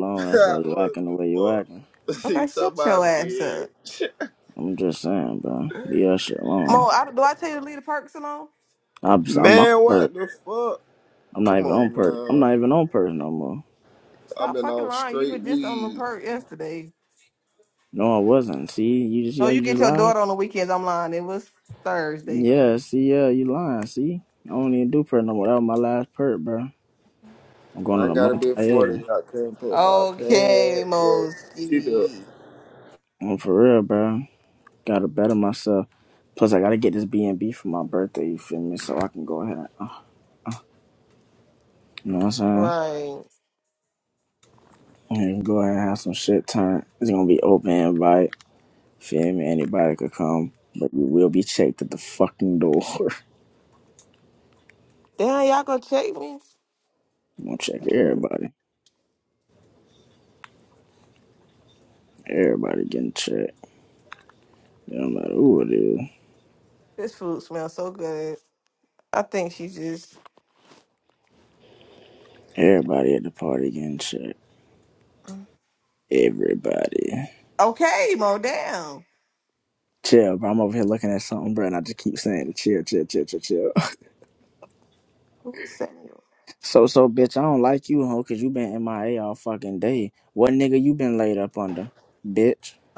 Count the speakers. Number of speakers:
3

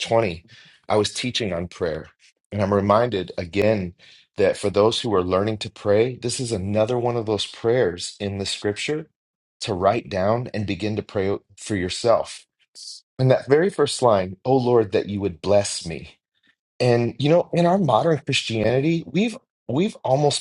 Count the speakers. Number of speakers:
1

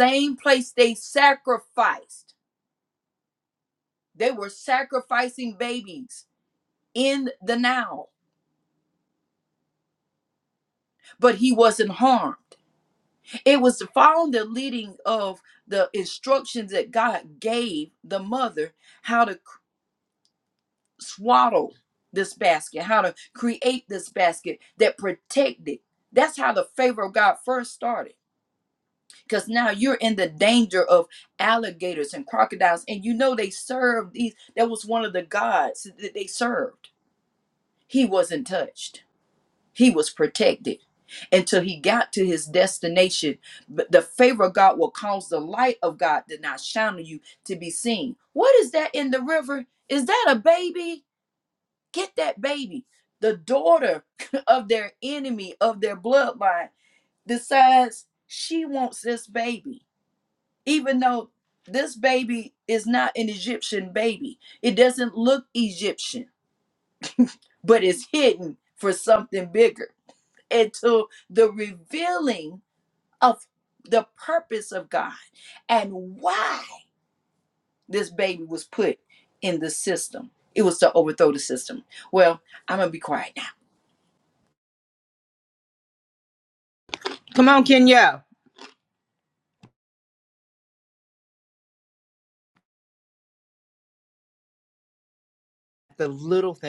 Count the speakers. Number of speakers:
2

